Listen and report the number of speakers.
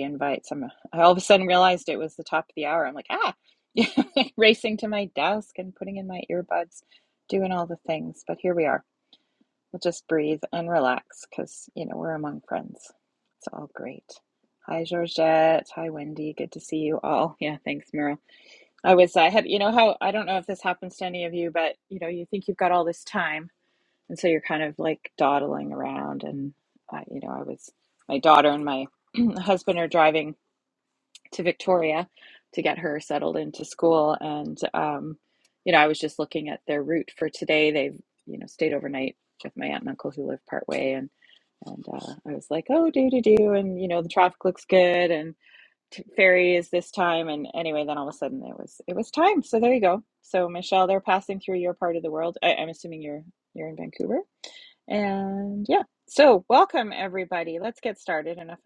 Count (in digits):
1